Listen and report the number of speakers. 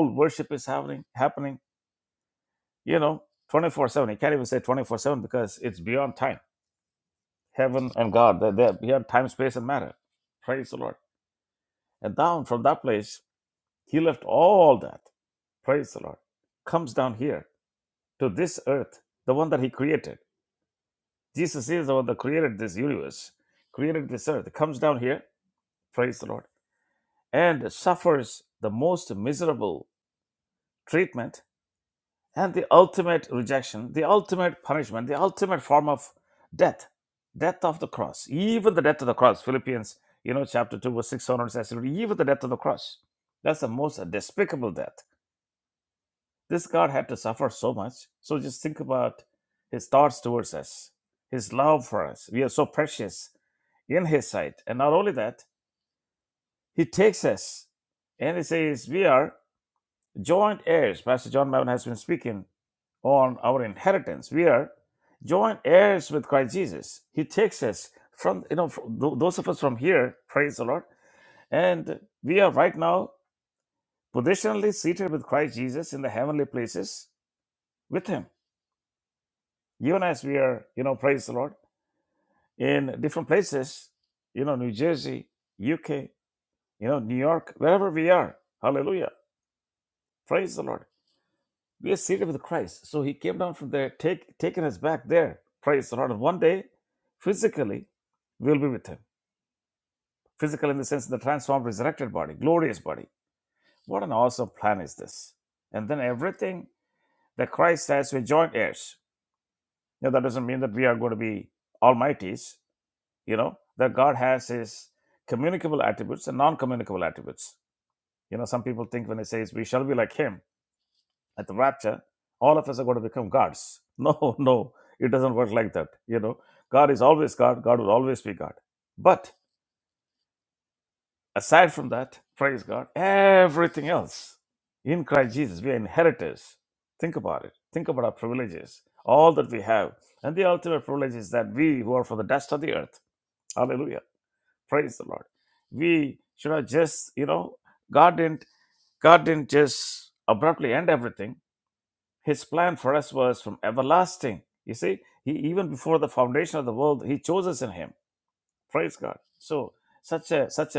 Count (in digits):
1